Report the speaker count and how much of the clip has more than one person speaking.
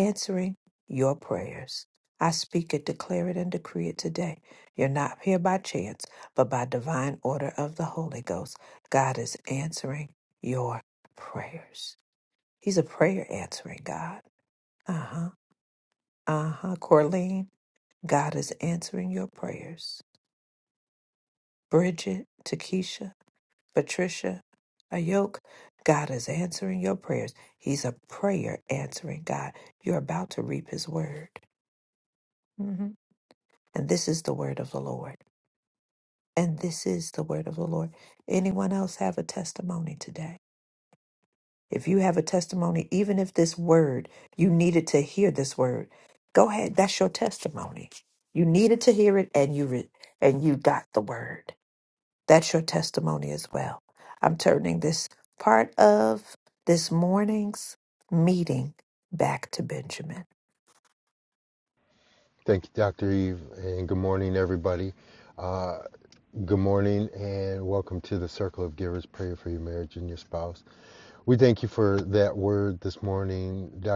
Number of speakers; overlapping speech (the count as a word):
two, no overlap